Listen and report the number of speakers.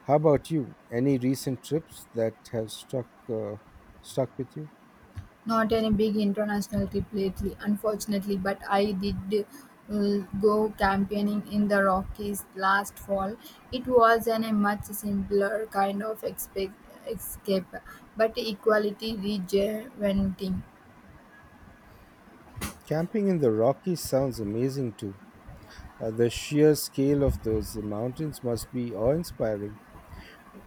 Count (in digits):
2